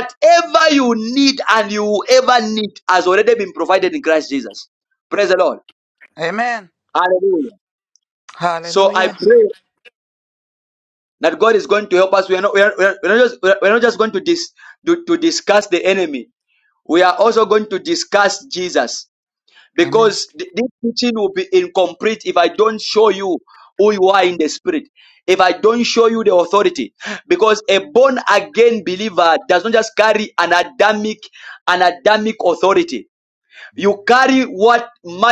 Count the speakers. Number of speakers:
two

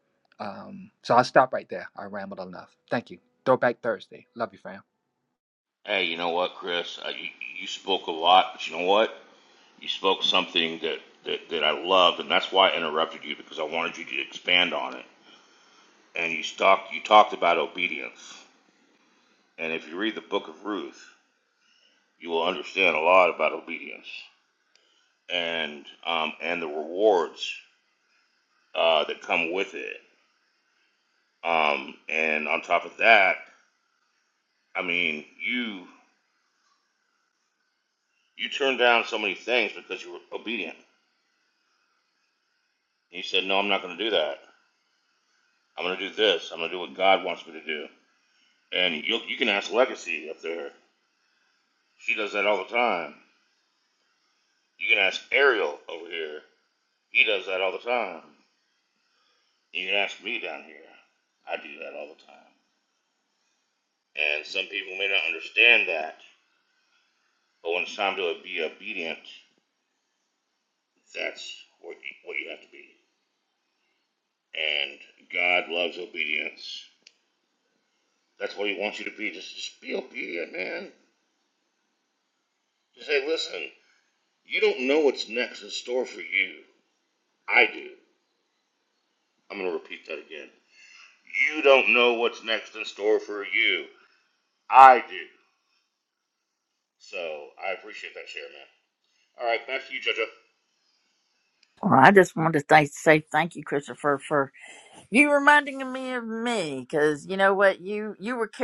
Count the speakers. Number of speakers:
three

